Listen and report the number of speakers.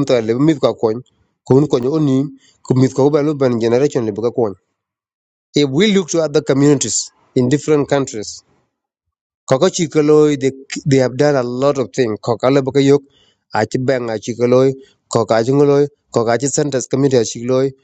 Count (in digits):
1